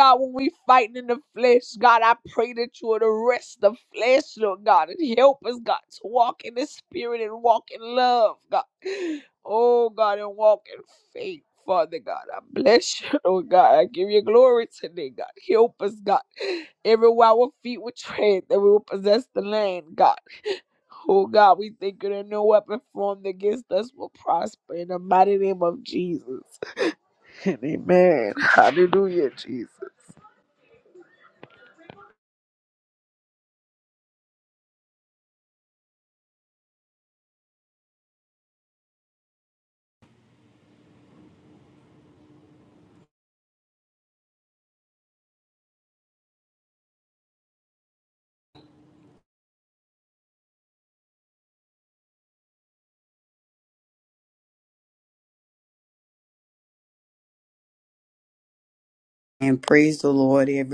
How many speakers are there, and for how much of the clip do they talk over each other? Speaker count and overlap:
2, no overlap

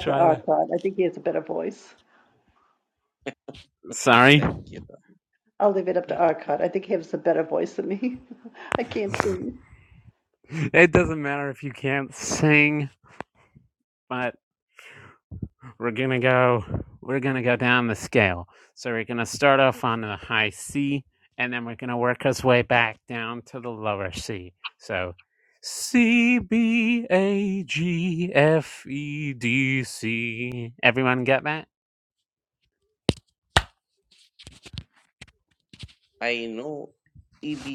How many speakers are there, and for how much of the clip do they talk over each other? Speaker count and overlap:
3, about 1%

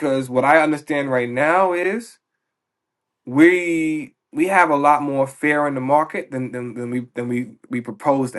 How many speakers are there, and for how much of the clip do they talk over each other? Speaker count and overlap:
1, no overlap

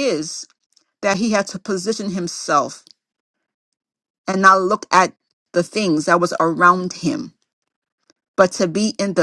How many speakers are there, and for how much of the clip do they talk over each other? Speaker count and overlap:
1, no overlap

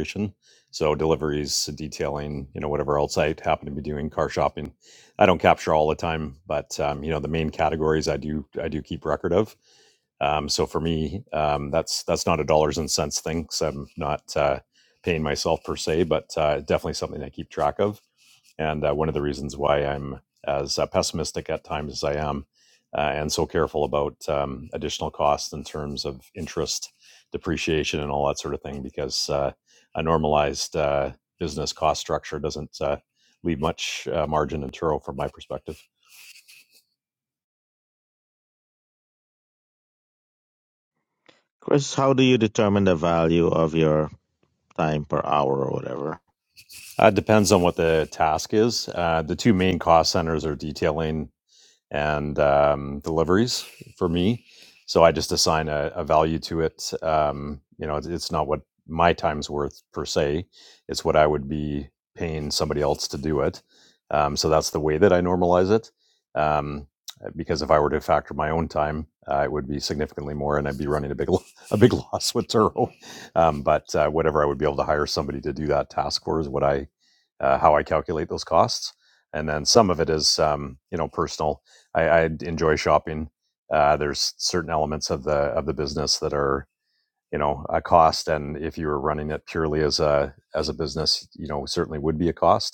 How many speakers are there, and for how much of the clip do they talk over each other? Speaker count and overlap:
2, no overlap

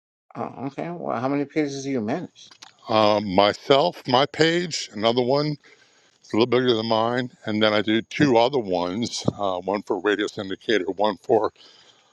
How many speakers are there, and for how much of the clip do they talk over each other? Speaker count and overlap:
2, no overlap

